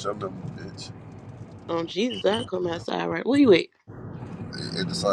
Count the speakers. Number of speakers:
2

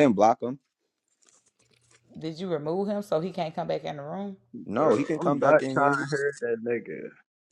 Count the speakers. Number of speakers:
3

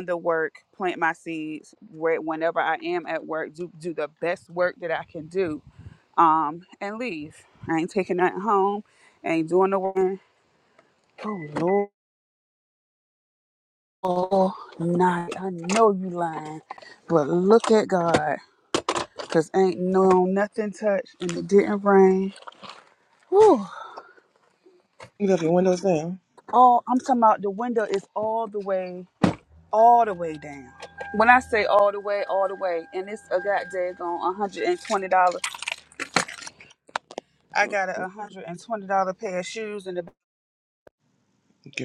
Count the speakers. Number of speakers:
2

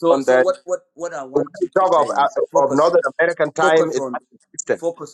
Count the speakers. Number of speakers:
2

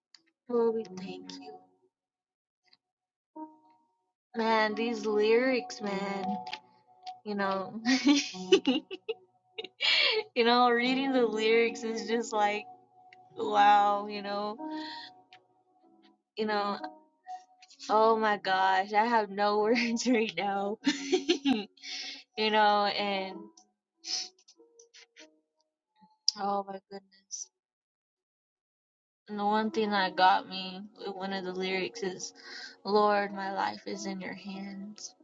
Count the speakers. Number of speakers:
1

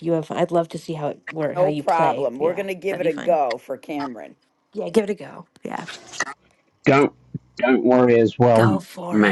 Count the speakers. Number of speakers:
3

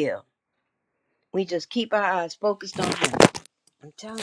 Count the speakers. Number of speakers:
1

